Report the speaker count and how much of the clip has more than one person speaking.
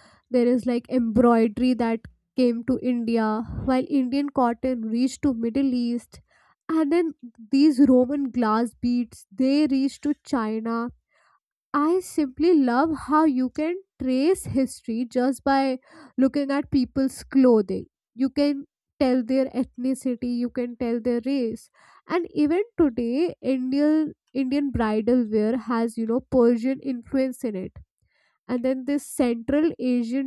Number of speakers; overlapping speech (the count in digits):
1, no overlap